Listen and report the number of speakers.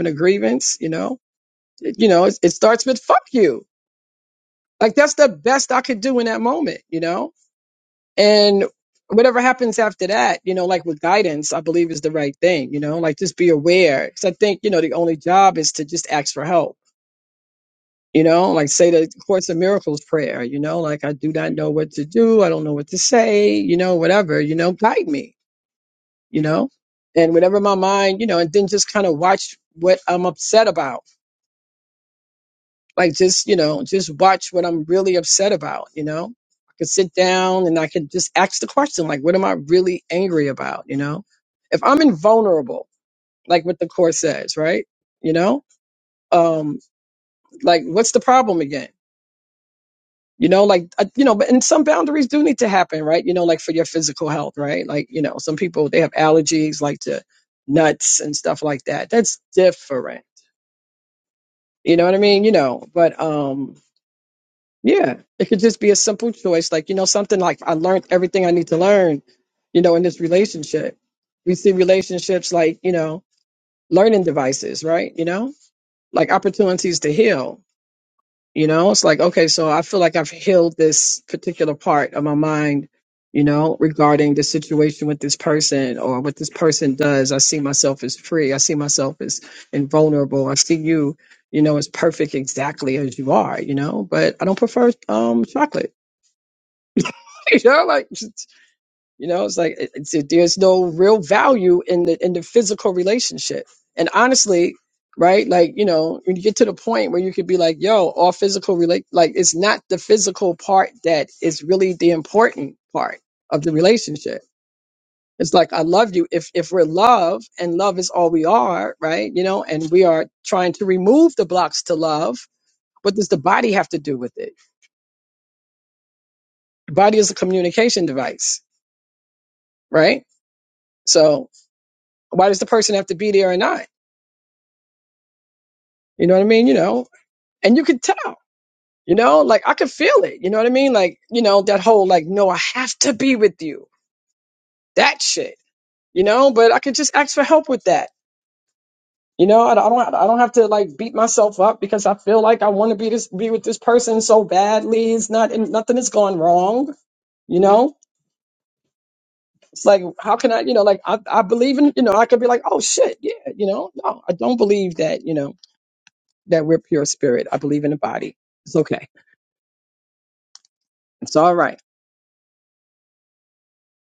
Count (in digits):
1